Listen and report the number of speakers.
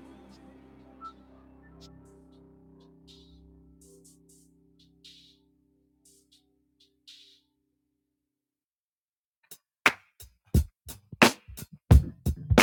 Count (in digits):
0